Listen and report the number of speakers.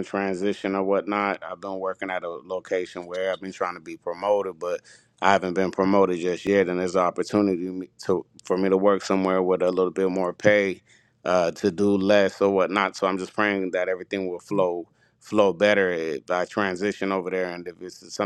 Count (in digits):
1